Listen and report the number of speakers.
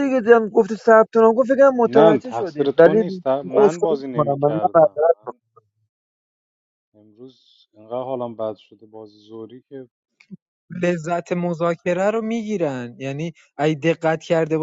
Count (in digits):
3